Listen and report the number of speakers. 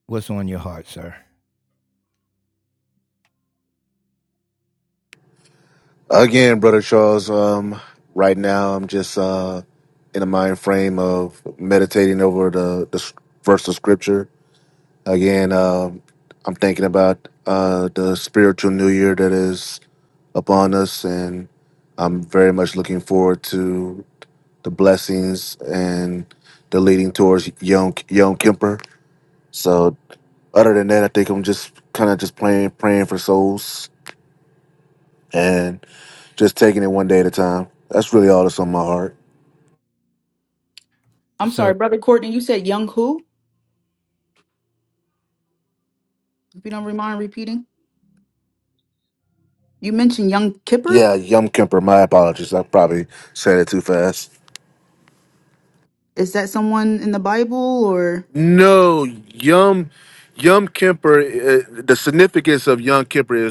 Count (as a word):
three